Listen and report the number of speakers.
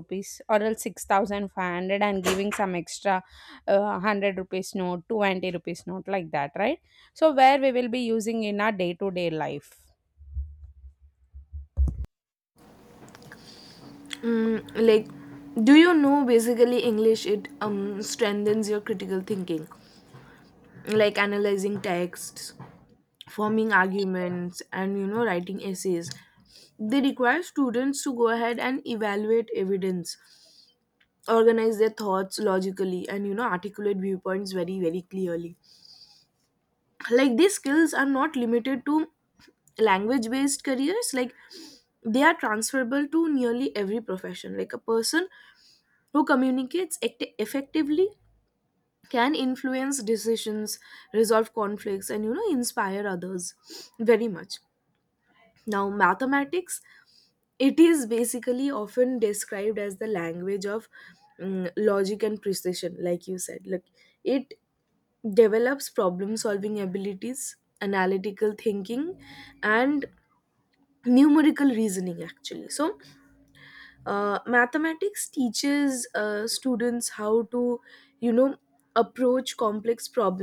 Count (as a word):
two